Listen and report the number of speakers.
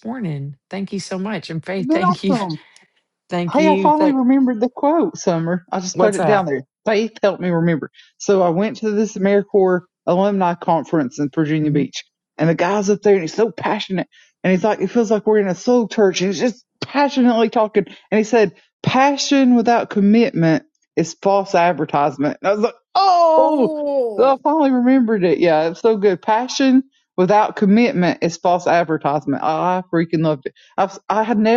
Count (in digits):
3